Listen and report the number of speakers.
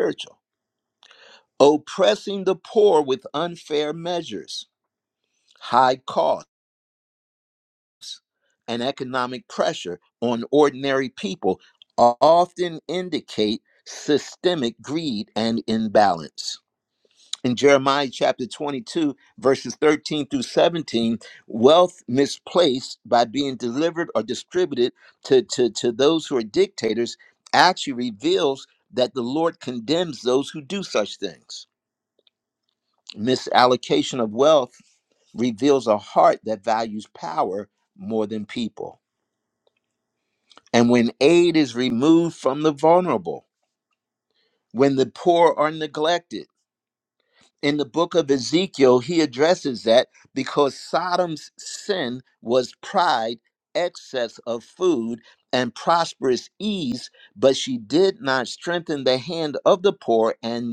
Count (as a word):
one